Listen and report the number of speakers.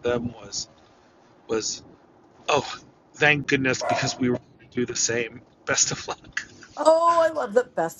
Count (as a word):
two